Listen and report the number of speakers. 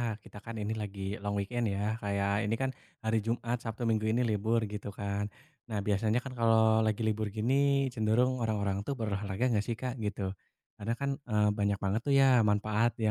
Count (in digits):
1